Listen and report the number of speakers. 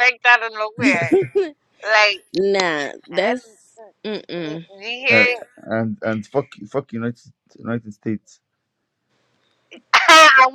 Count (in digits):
3